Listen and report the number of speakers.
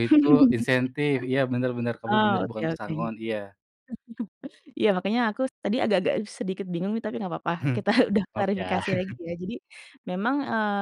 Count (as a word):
two